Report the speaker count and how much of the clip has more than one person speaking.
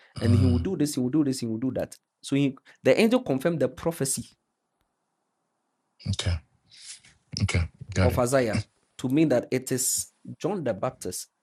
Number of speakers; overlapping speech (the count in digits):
2, about 5%